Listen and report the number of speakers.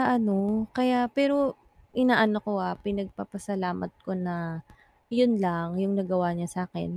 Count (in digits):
1